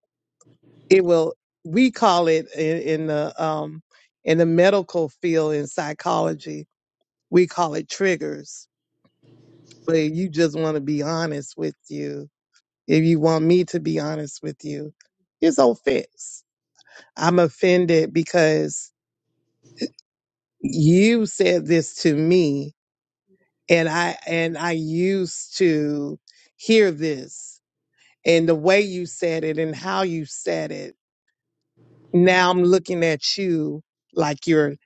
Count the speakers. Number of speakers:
1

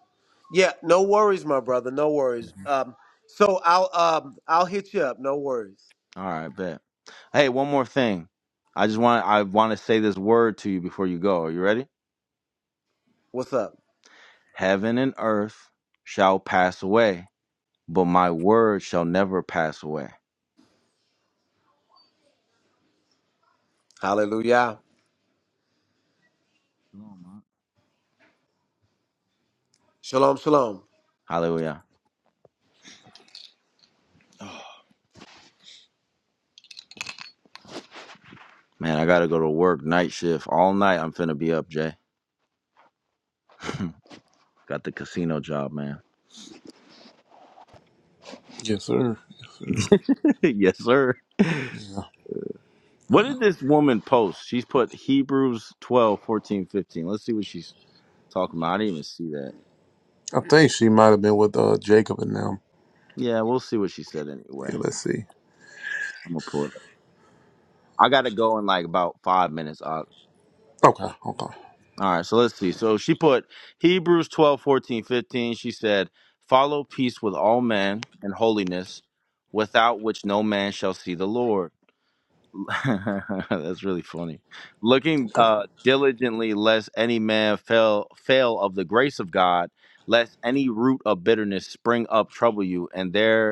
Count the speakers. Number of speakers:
3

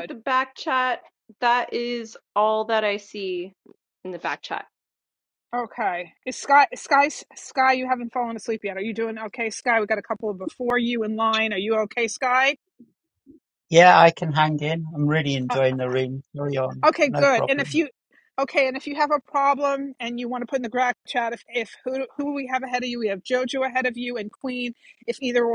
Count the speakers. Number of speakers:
3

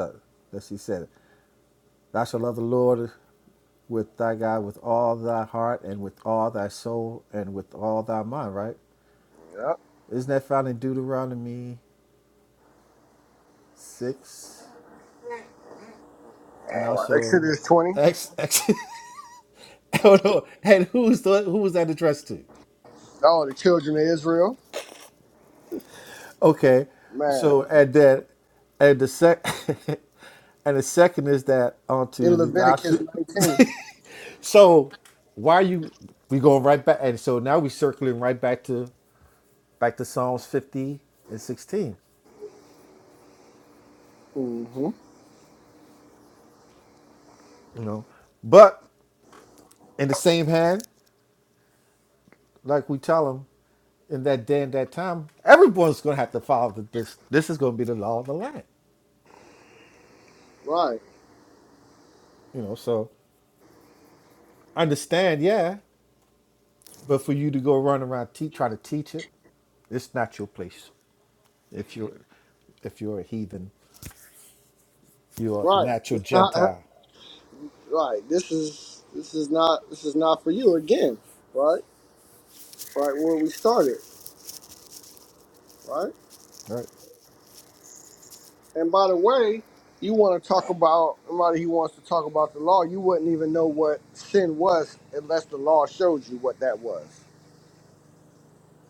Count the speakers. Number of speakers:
2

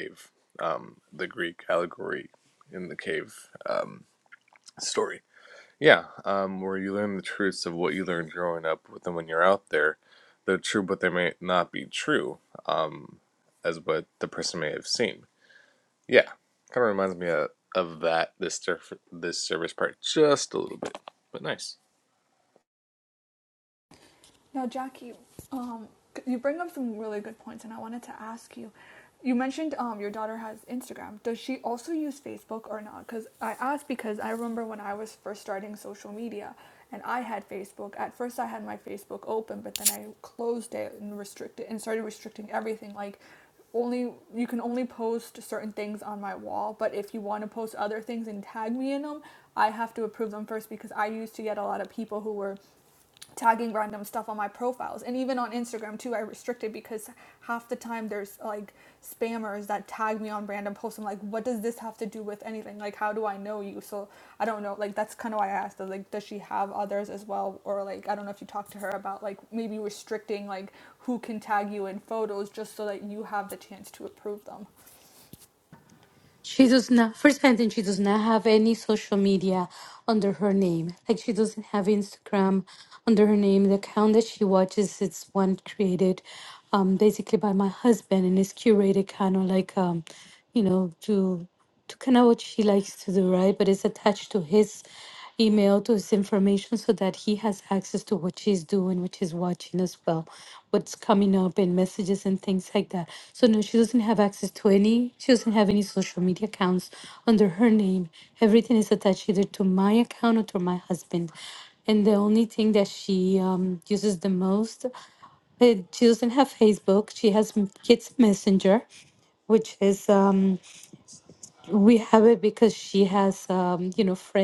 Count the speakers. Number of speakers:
3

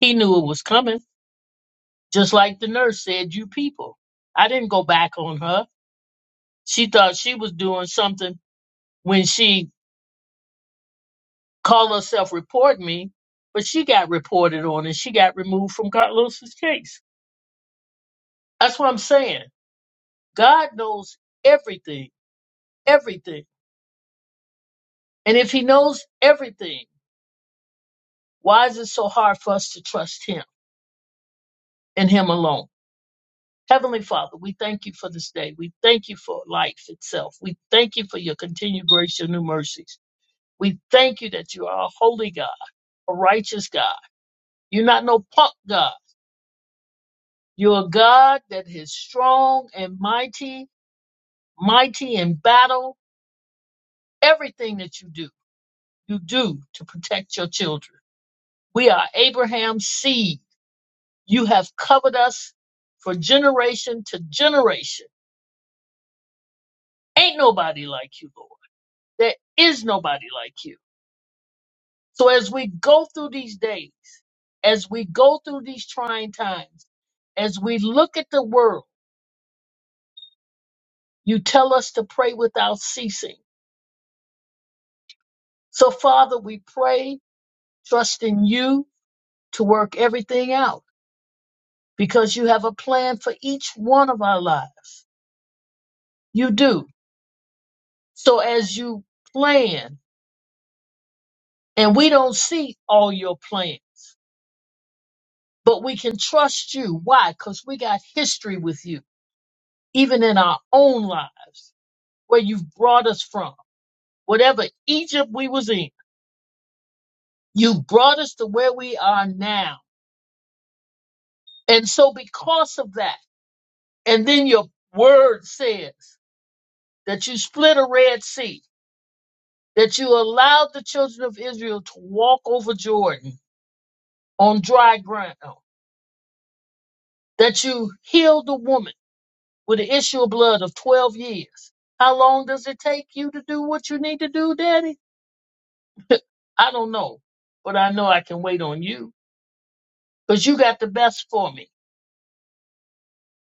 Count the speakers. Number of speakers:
1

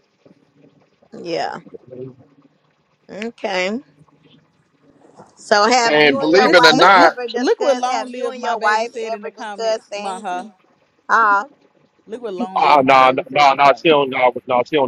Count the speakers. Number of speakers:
3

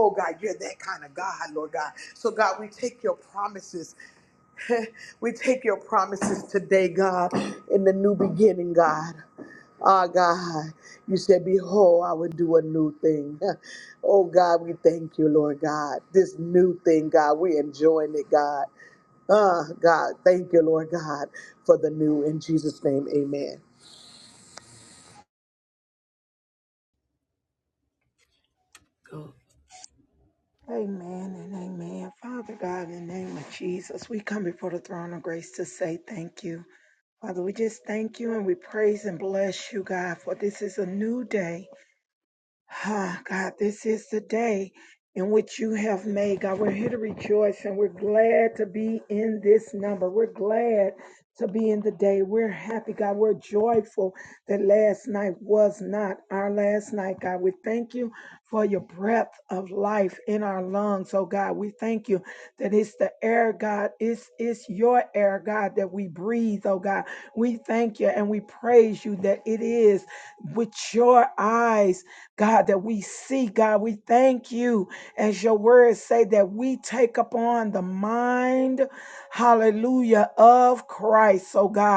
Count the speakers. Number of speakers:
2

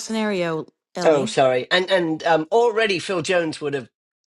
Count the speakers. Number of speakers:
2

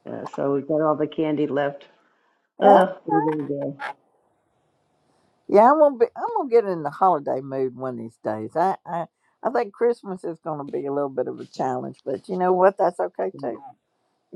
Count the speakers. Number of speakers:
2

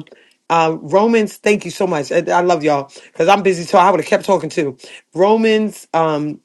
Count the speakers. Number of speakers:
1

